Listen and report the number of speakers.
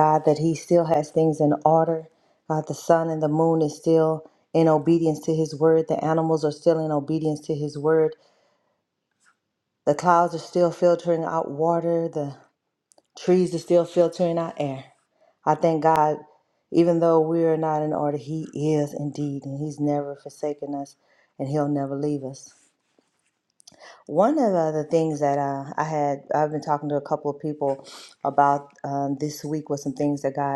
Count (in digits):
1